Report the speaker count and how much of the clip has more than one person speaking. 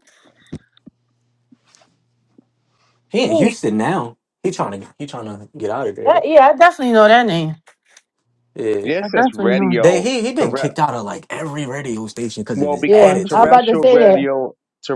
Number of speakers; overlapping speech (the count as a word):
three, about 24%